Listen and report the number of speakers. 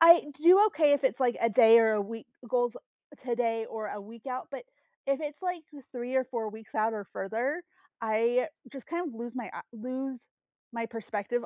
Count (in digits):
1